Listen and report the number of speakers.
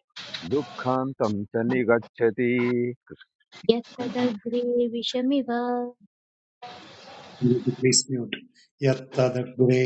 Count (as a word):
three